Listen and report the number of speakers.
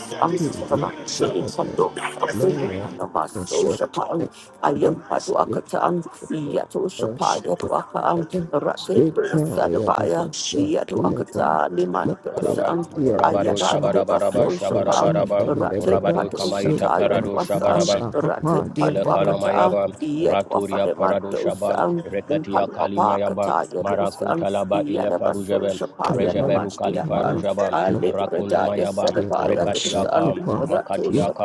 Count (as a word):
three